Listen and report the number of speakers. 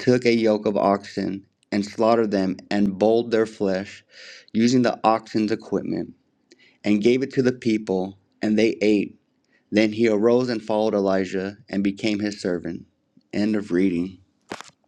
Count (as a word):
one